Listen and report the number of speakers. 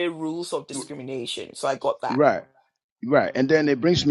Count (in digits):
2